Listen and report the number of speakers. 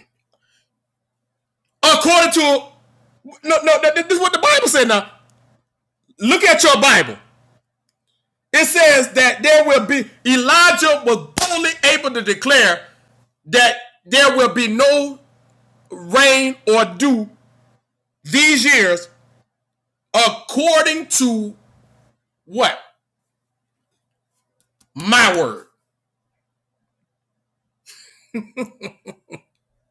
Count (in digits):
1